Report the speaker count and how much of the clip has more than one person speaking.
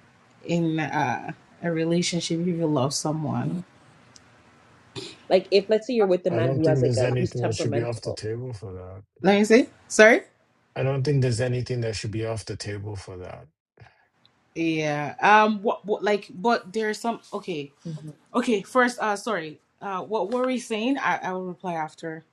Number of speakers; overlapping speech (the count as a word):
three, about 9%